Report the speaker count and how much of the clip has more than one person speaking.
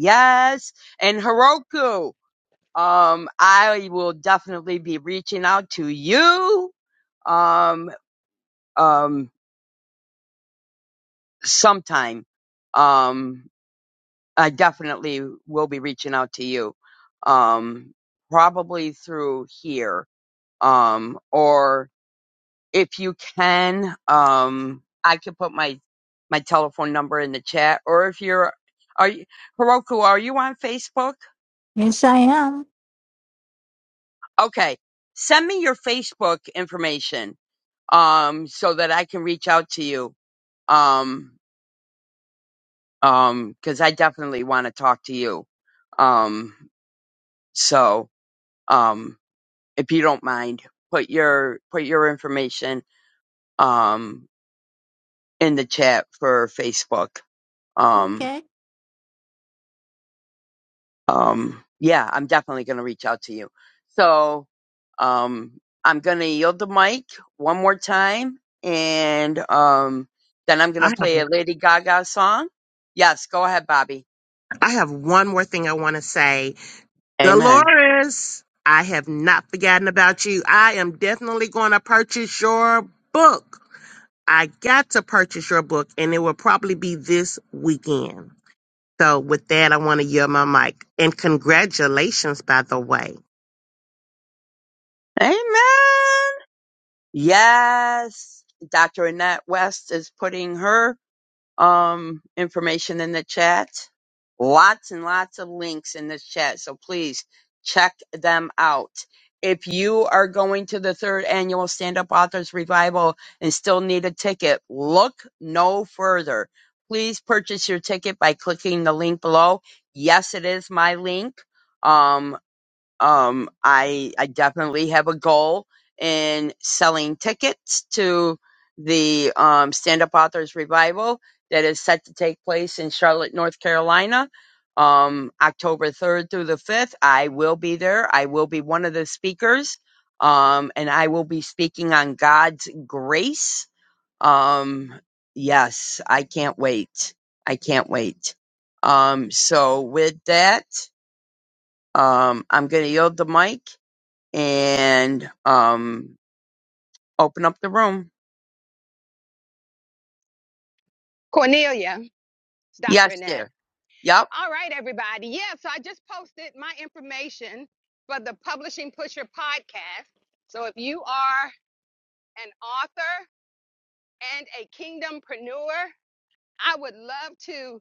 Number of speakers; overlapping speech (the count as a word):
four, about 1%